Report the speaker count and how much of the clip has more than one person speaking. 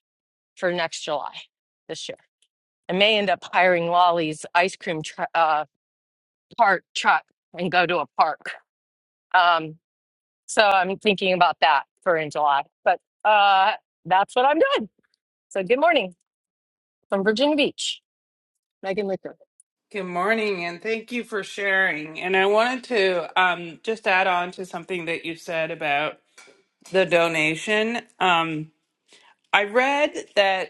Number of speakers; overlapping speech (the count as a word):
two, no overlap